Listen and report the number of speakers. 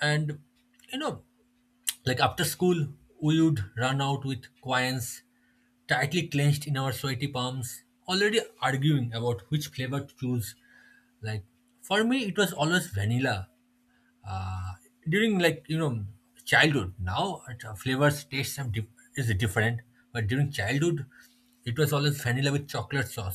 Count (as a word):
one